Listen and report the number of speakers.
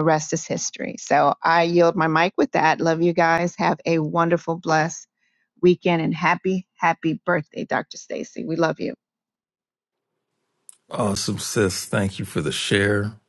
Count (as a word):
two